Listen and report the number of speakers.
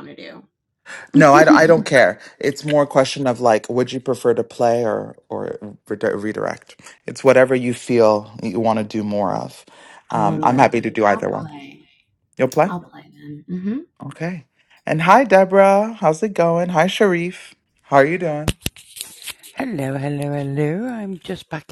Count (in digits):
3